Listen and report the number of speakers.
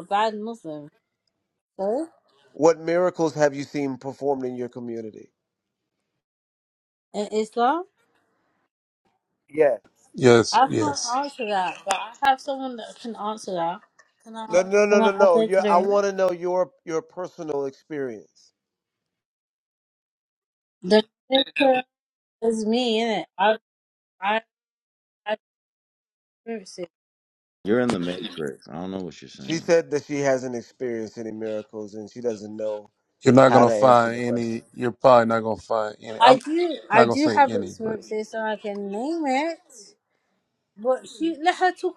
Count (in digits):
4